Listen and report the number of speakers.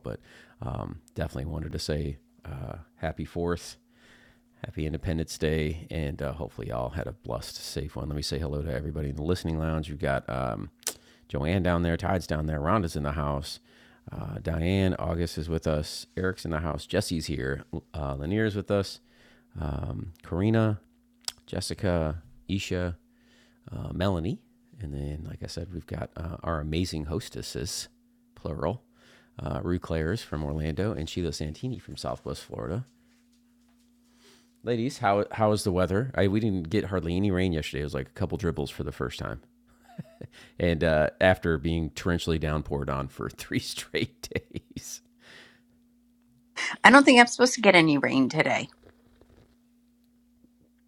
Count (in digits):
2